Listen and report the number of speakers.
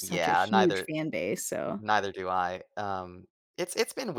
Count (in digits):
2